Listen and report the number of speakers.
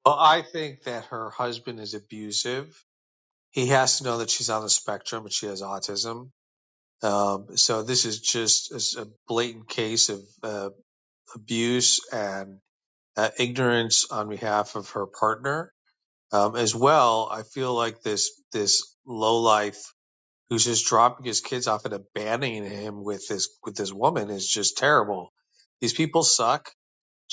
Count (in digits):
1